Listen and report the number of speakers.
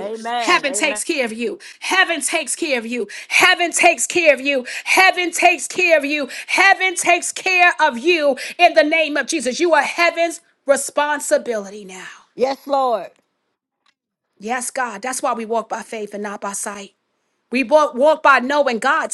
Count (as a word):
two